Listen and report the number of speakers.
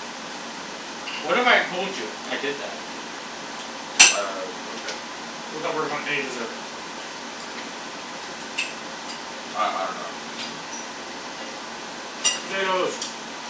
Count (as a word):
three